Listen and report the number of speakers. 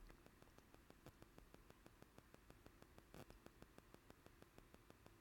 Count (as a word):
zero